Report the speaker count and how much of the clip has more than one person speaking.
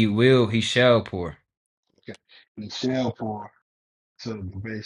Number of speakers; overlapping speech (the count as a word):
two, no overlap